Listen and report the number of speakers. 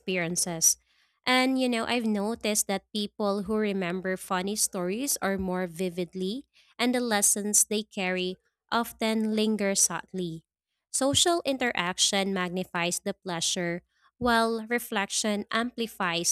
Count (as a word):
one